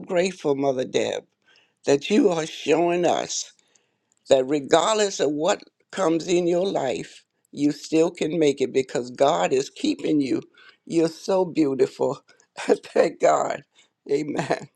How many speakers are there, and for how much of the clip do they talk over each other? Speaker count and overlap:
1, no overlap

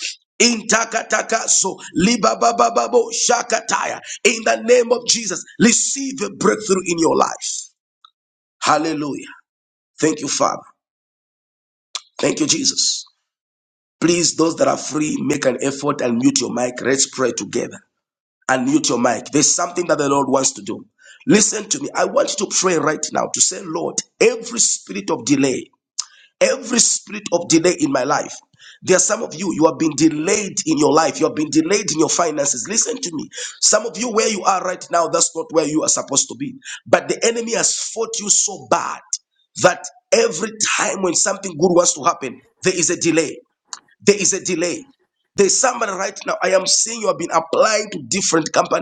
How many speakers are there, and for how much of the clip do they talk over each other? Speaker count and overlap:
1, no overlap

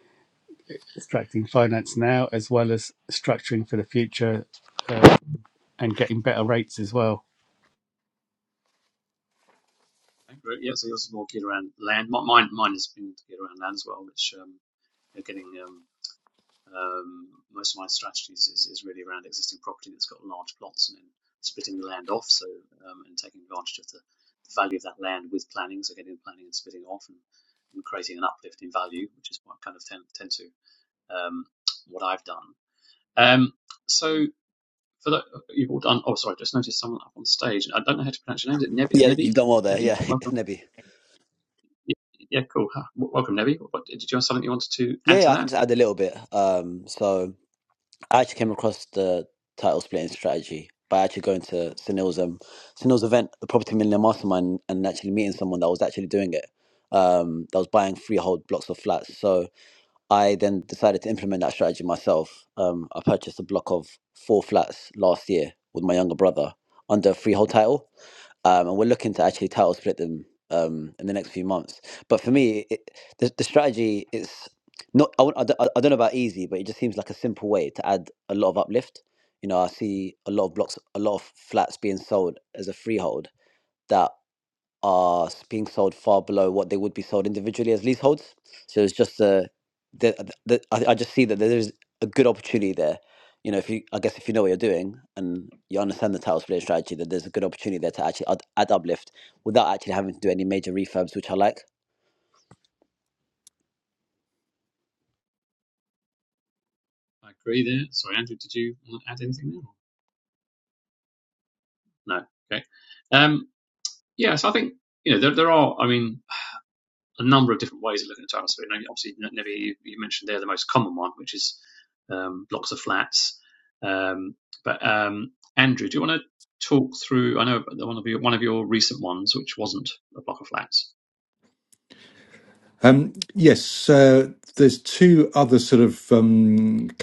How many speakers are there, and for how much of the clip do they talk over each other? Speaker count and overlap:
4, about 1%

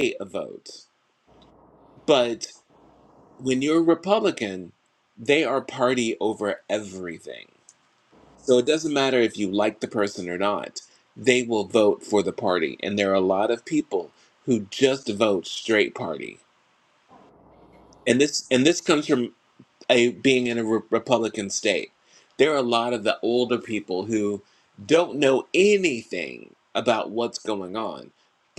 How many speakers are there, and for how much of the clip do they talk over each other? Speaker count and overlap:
1, no overlap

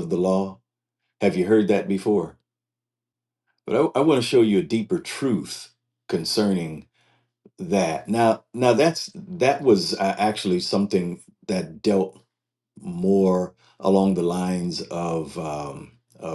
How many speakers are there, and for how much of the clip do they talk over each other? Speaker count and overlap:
1, no overlap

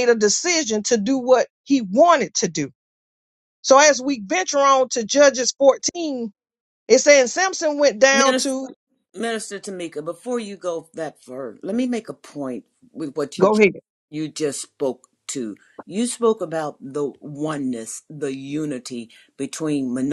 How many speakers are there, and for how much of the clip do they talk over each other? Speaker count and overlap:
2, about 3%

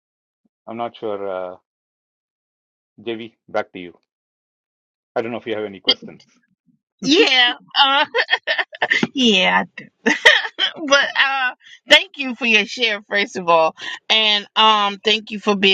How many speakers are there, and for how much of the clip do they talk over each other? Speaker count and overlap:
2, no overlap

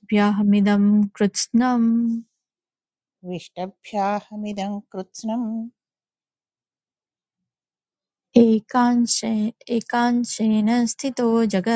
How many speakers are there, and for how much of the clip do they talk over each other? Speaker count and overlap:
2, no overlap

